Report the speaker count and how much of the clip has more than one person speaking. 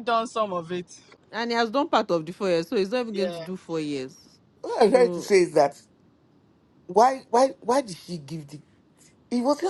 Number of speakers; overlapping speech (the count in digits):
3, about 7%